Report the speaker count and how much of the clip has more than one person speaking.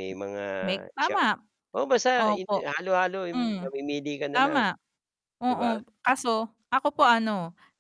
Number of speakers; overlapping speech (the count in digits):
2, about 16%